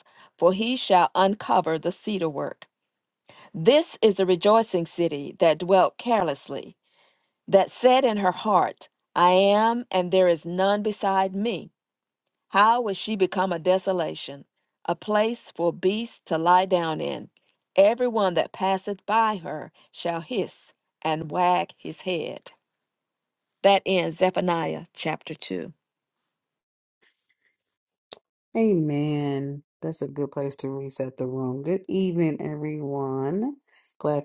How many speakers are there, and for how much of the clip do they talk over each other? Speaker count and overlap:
2, no overlap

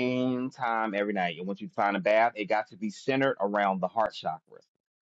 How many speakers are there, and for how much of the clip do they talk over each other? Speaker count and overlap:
1, no overlap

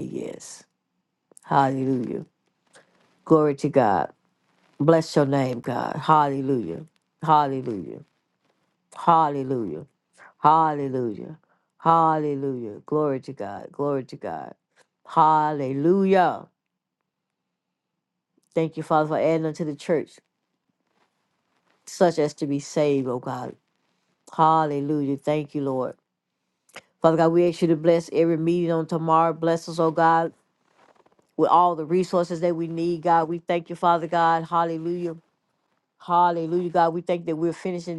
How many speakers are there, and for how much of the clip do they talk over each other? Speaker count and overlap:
1, no overlap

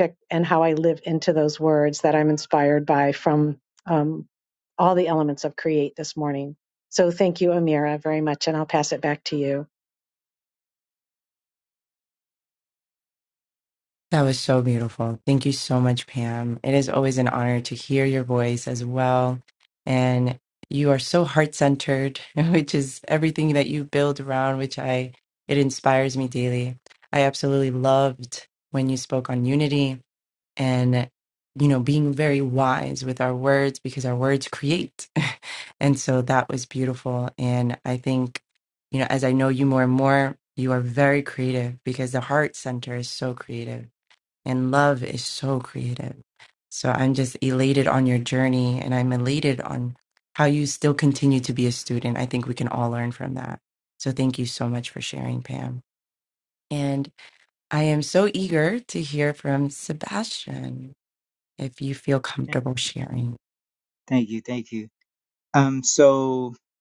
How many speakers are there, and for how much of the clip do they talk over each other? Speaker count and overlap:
3, no overlap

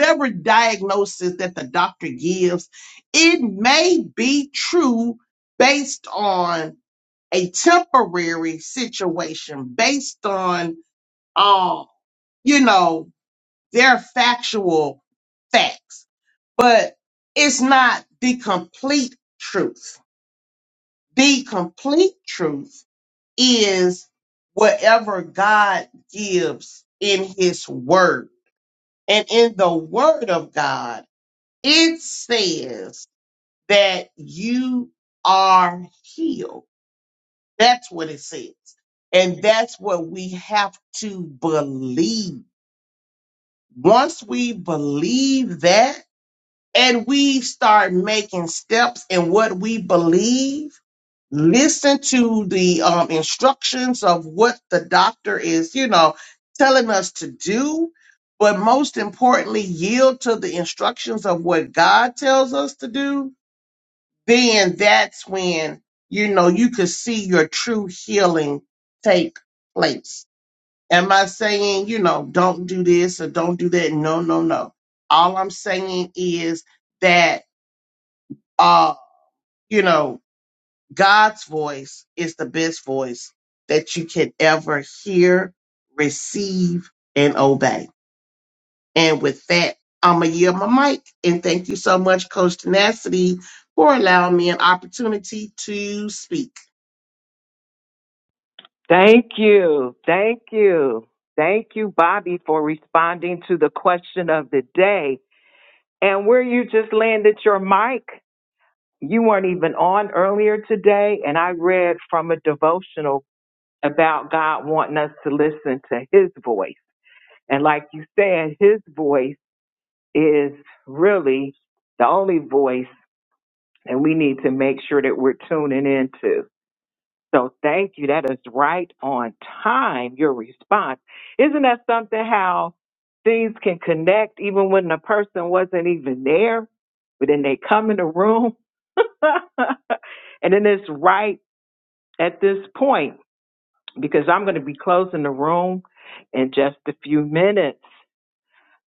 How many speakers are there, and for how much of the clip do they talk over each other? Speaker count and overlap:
2, no overlap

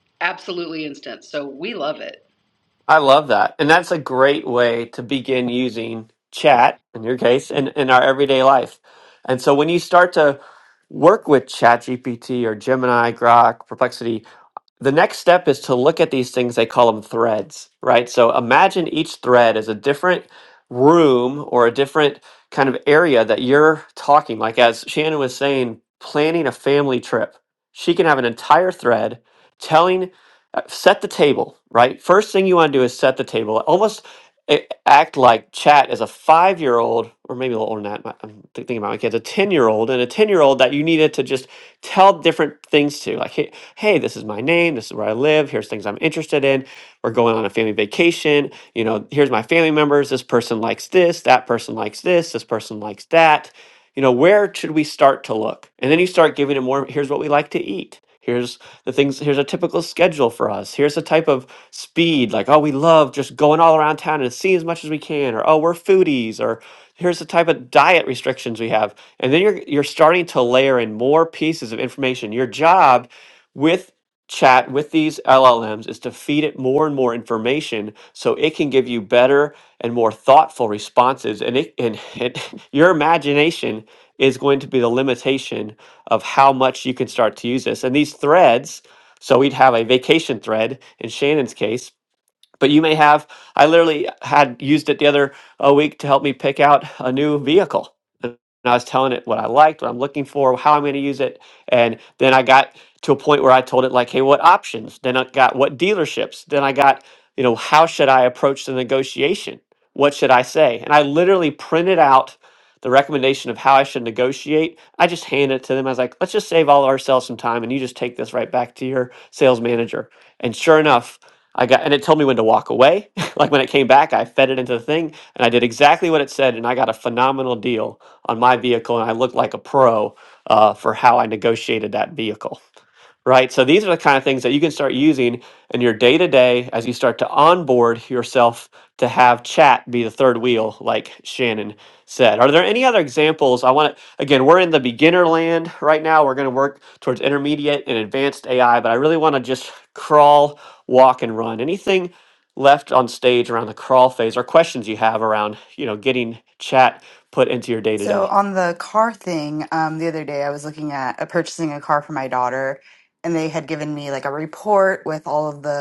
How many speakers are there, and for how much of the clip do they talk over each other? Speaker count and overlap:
3, under 1%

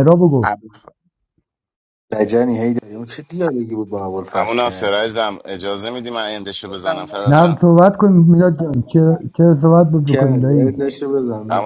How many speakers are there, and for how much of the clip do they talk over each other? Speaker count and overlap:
3, about 15%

